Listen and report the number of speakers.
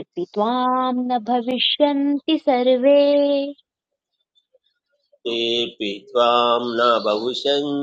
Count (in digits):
2